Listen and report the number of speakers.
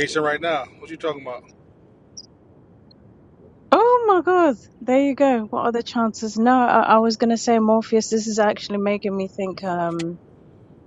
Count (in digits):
2